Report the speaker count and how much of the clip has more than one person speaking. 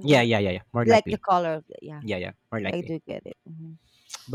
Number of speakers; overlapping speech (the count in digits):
2, about 17%